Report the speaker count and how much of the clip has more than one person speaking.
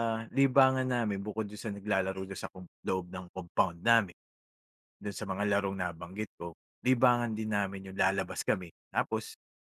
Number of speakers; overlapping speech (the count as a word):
one, no overlap